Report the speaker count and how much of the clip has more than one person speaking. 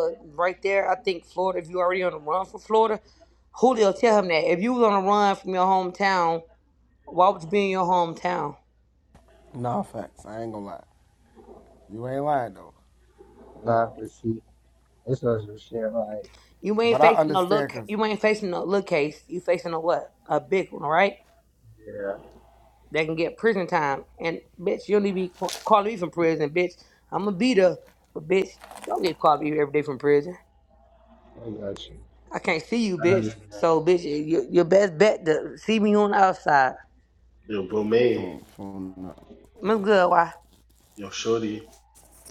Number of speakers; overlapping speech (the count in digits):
4, about 4%